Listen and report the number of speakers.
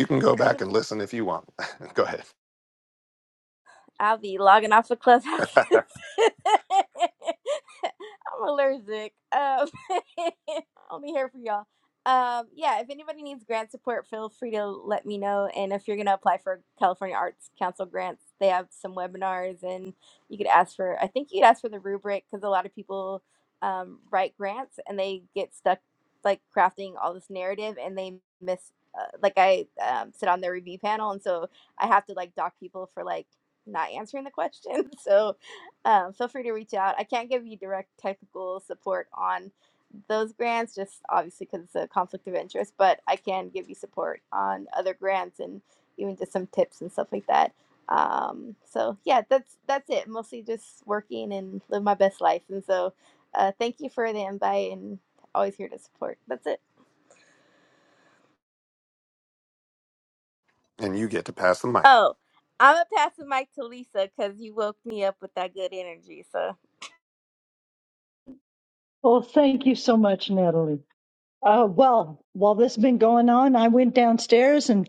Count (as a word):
three